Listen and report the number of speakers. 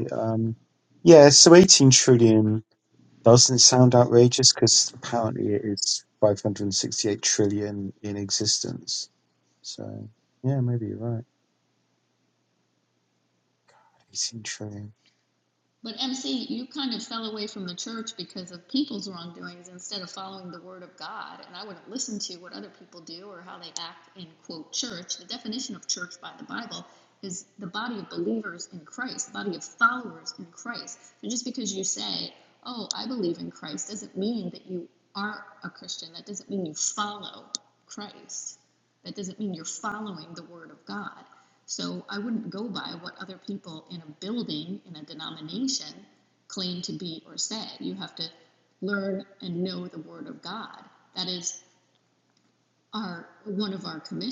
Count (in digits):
2